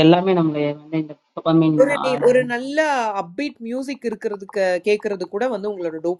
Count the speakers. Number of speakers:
2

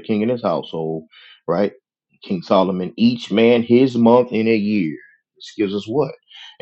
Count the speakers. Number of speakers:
1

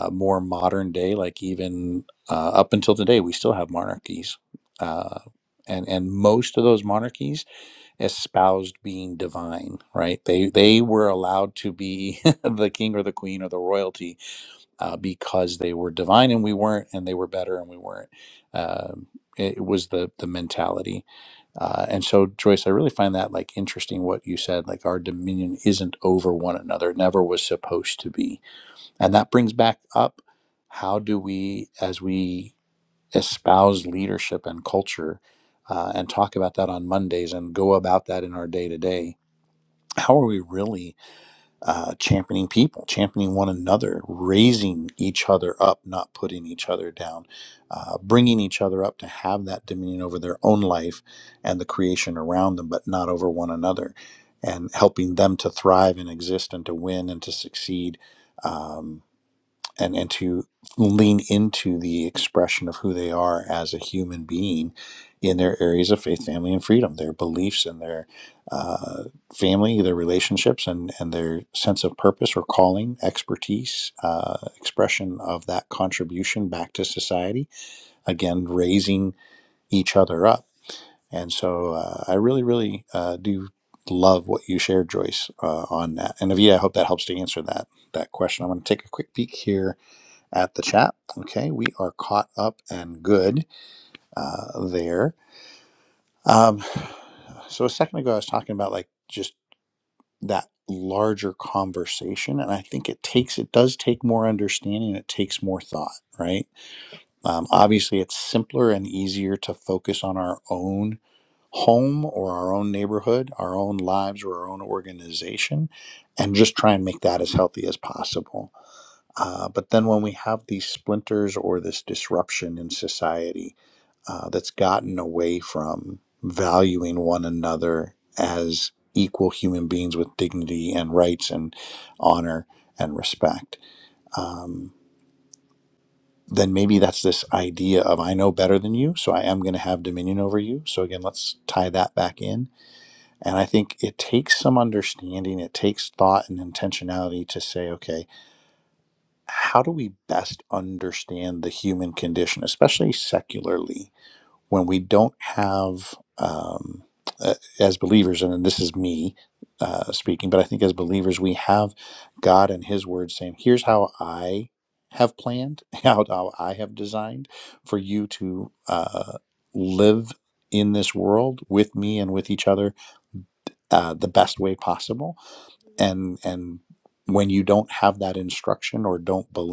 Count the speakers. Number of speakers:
1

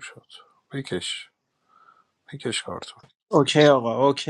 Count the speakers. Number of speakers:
2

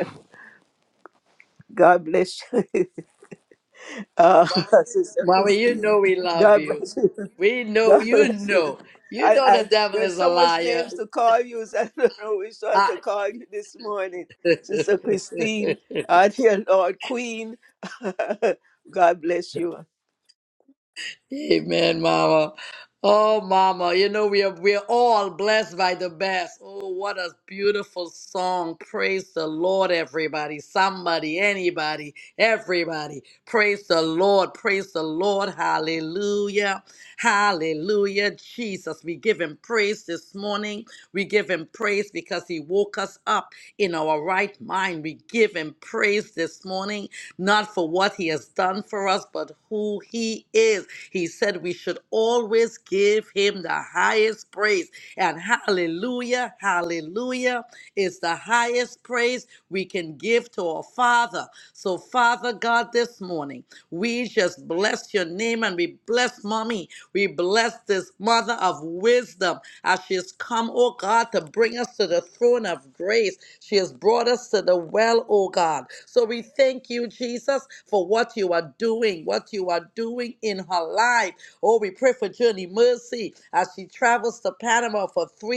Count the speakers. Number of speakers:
2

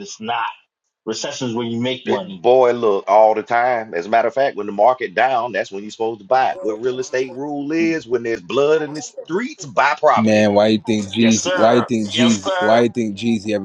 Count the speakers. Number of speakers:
3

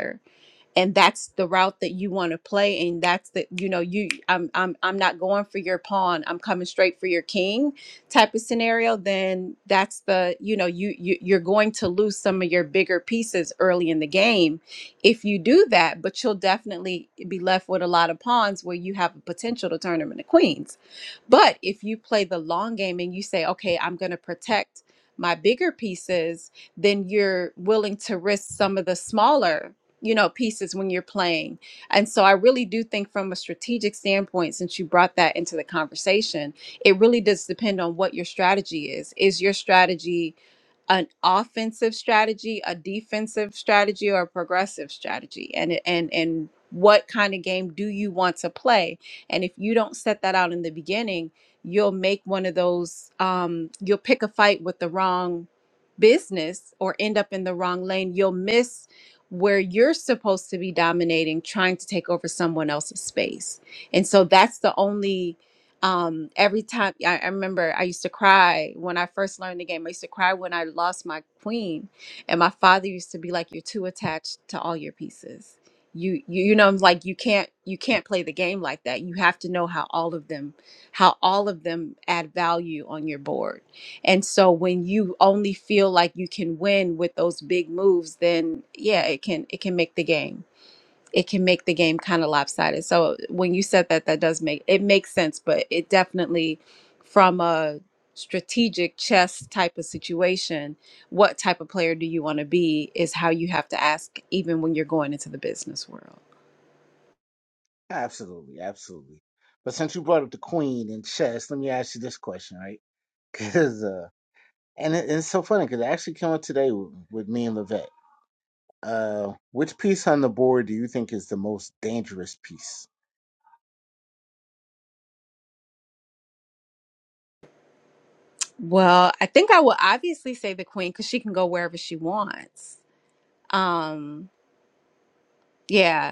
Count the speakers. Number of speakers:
2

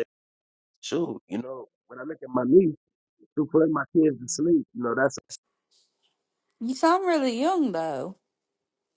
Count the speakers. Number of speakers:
2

